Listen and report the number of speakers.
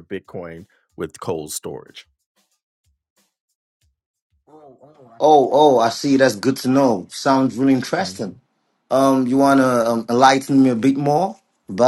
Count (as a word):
two